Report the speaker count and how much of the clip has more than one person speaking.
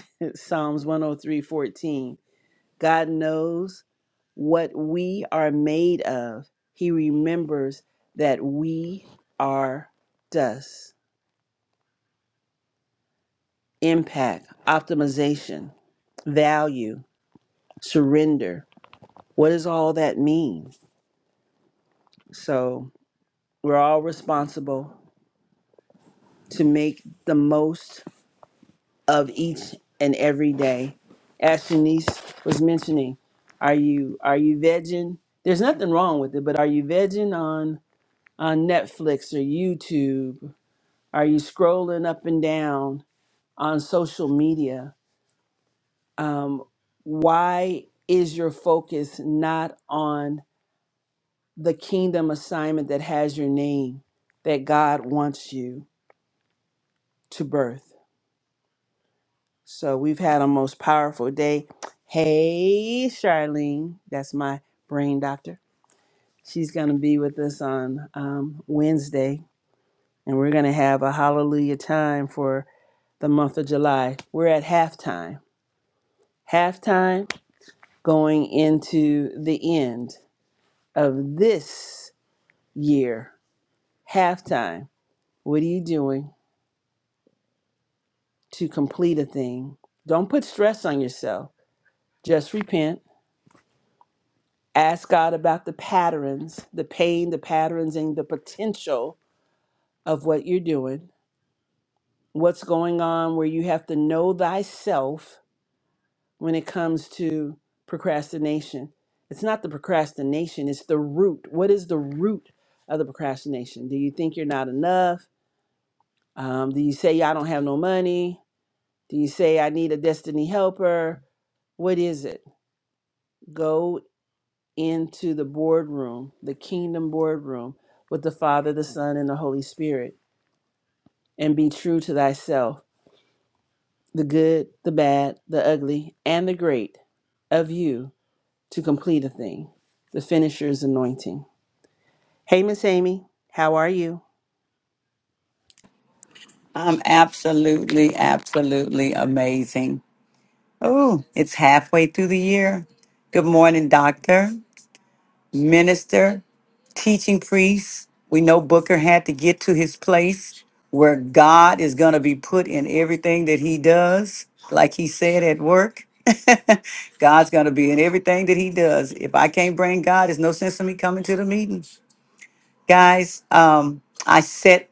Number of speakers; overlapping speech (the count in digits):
2, no overlap